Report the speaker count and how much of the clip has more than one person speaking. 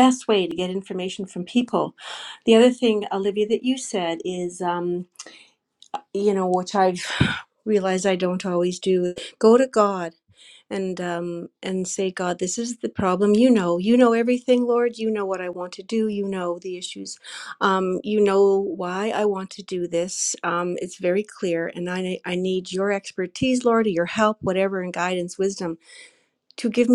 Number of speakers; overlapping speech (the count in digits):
1, no overlap